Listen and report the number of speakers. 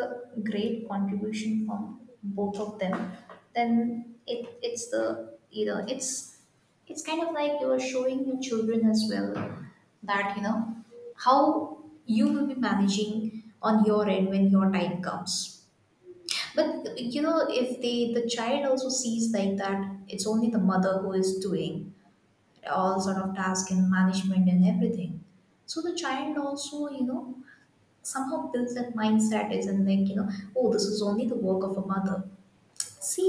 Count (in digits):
1